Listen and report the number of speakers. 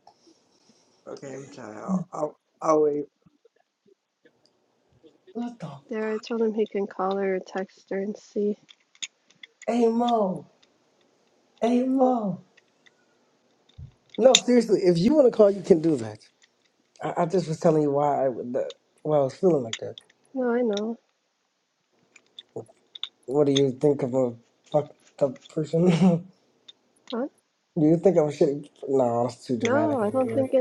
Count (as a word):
three